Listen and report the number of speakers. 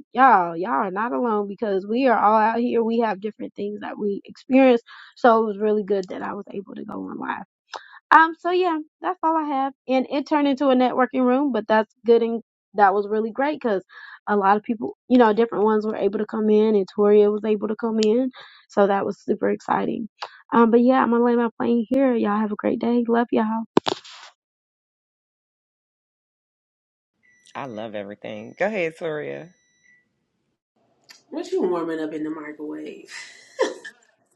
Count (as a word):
three